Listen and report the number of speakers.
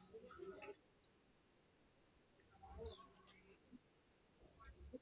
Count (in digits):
0